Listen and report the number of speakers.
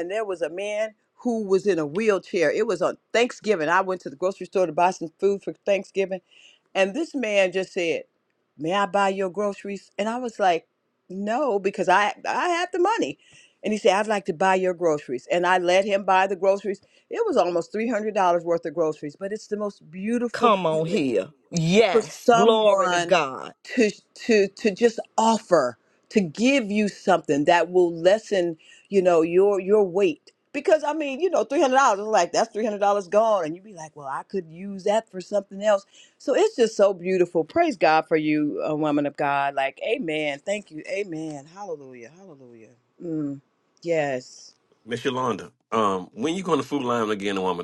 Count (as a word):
three